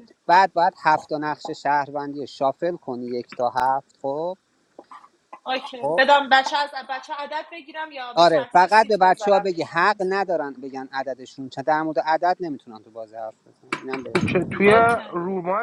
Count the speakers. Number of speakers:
three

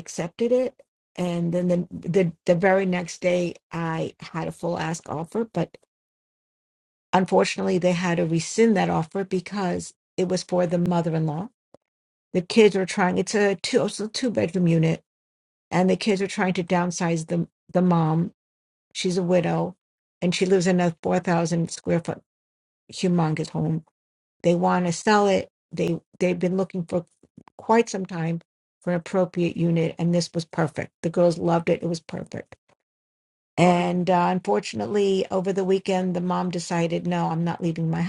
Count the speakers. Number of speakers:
one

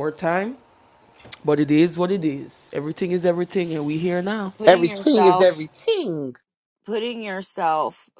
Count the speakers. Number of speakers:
three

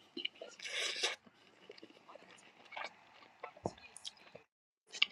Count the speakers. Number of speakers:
zero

